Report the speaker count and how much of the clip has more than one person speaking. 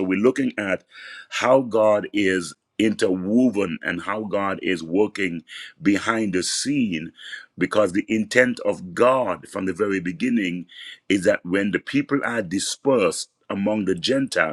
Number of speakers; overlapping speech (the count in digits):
1, no overlap